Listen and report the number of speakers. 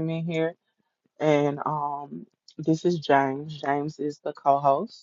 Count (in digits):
1